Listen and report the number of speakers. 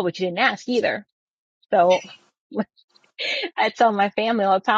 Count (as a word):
one